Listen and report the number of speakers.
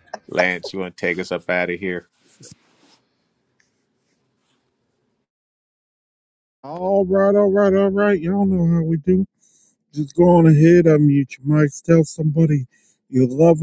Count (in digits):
2